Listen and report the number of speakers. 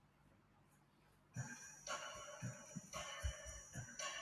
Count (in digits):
0